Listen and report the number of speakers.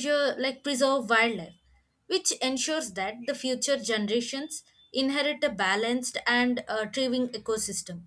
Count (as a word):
one